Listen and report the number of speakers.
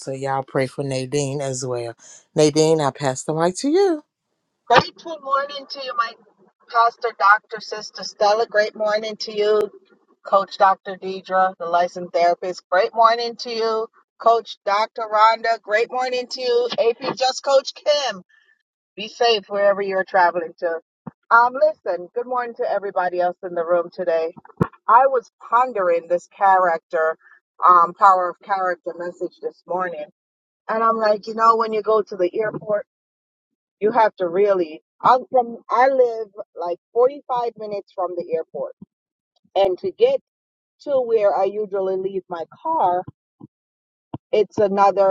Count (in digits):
2